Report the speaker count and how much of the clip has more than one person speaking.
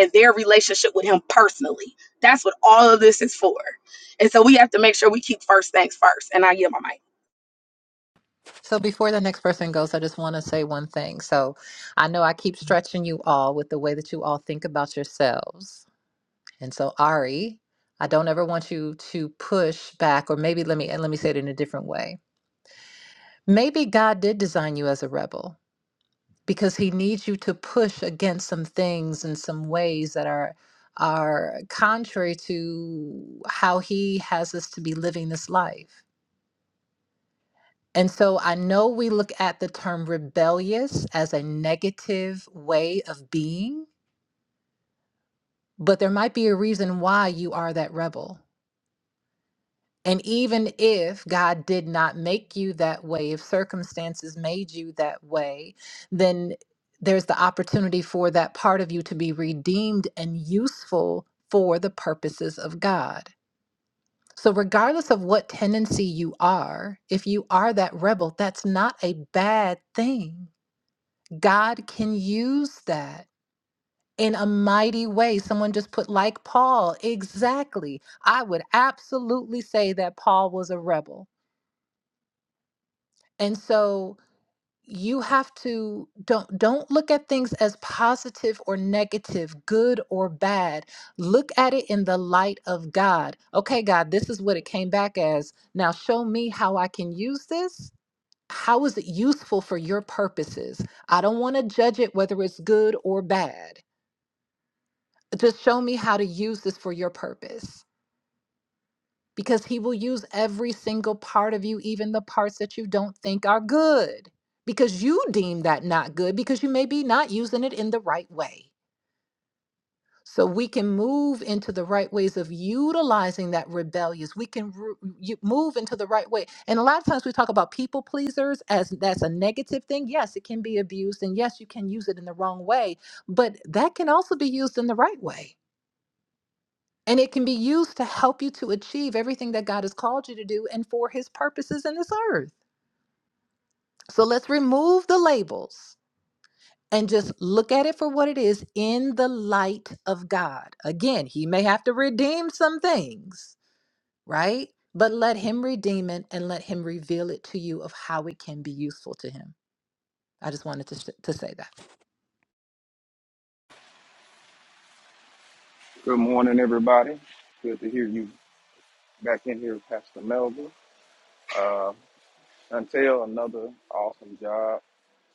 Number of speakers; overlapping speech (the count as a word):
three, no overlap